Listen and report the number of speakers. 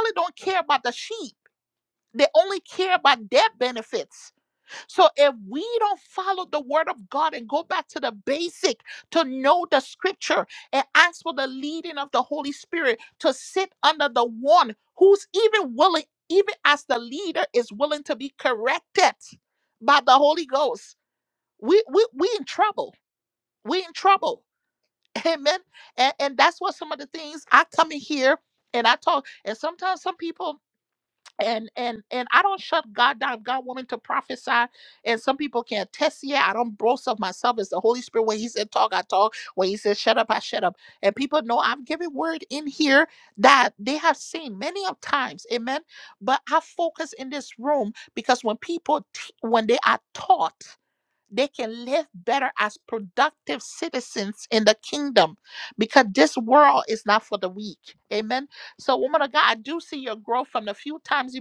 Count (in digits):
1